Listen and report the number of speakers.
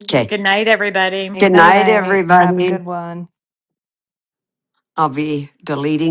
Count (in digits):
3